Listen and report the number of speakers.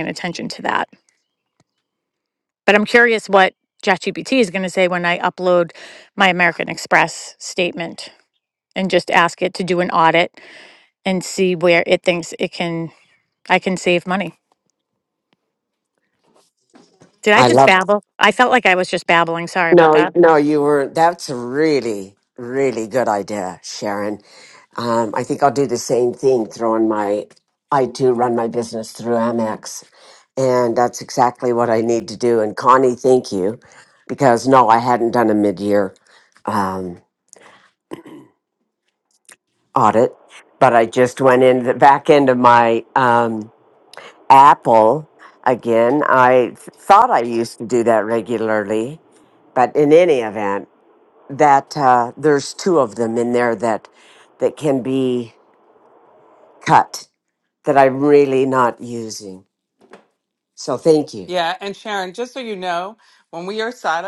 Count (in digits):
3